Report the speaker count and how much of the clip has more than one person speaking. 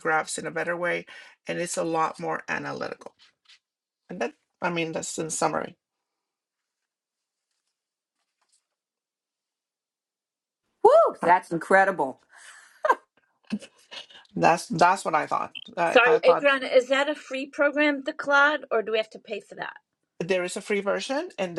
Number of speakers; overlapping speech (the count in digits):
3, about 3%